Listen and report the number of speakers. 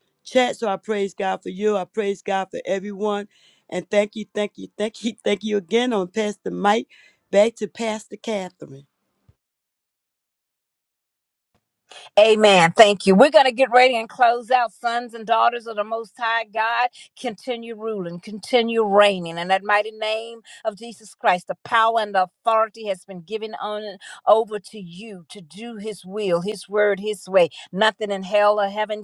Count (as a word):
two